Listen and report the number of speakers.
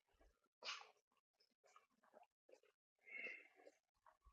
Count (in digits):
0